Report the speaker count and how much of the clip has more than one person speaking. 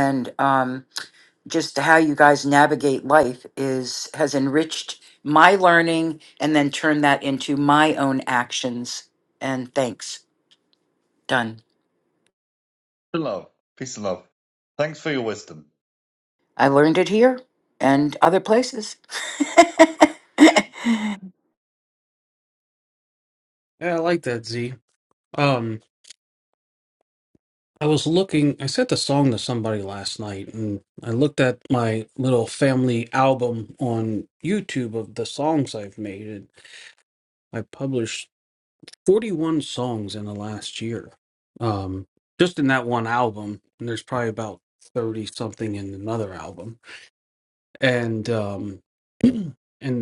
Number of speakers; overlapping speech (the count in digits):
3, no overlap